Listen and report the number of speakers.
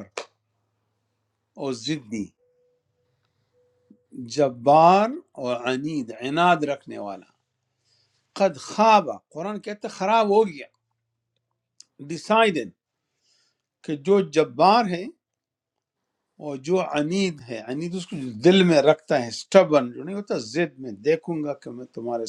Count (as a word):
one